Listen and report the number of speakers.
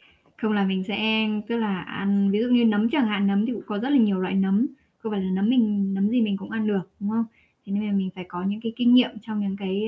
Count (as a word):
one